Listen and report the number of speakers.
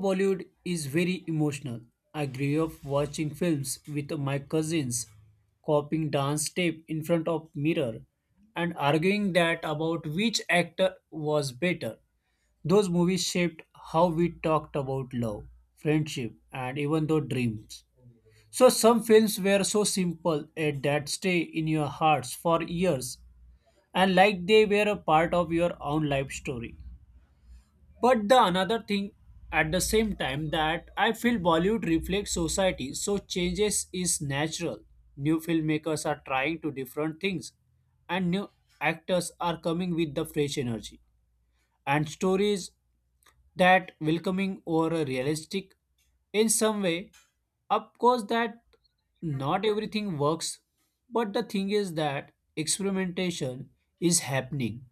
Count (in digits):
1